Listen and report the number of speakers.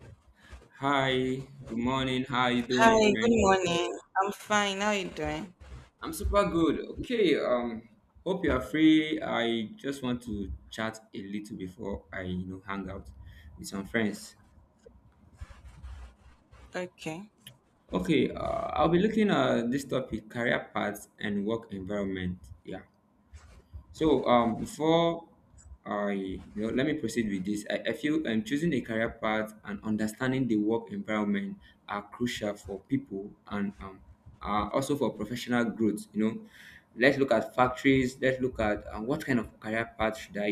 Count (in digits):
2